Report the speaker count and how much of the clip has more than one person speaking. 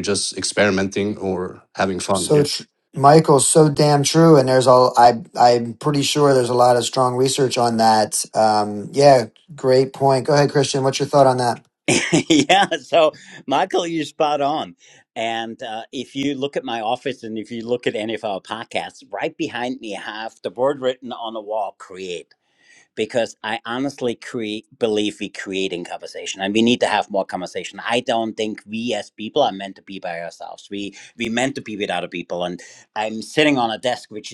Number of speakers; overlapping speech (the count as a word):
three, about 1%